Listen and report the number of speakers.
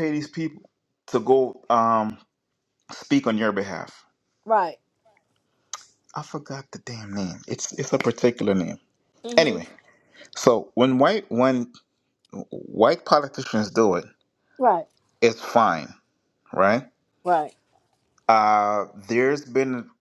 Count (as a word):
two